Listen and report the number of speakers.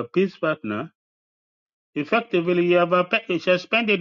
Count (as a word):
one